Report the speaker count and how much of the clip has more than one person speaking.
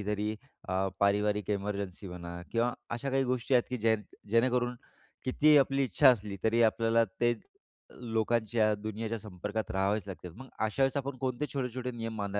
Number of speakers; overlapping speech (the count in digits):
1, no overlap